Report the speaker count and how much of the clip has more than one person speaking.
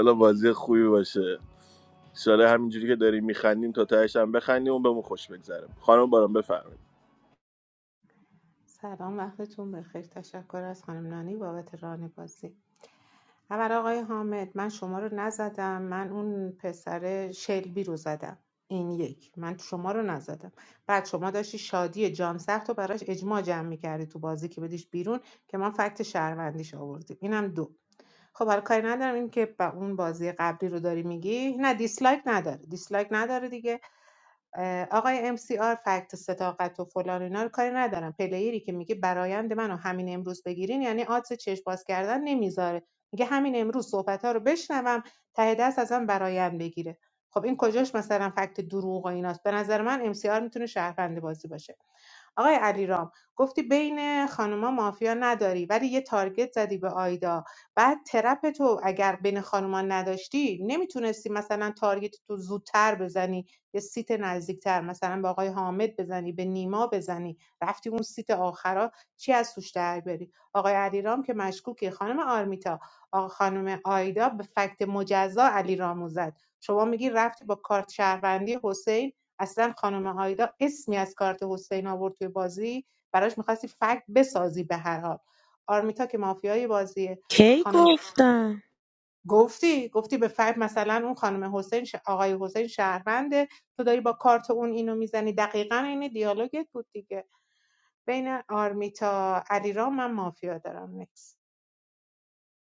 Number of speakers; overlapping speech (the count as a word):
three, under 1%